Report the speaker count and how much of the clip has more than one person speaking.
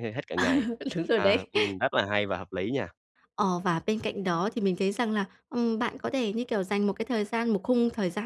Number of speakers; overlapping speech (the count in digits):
2, about 3%